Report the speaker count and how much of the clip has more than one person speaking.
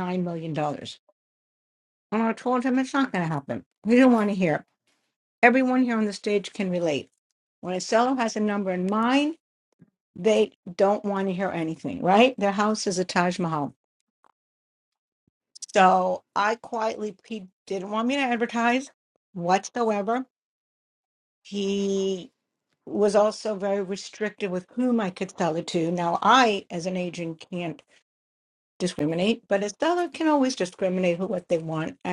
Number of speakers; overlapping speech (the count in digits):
1, no overlap